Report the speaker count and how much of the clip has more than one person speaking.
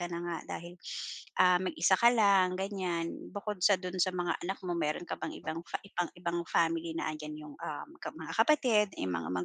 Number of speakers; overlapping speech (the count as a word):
one, no overlap